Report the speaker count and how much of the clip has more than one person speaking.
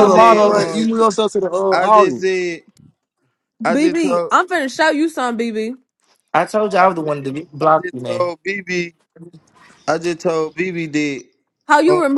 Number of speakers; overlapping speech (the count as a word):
four, about 24%